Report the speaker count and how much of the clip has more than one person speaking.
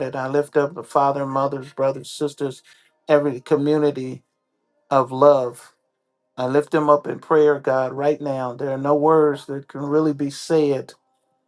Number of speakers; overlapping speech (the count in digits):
1, no overlap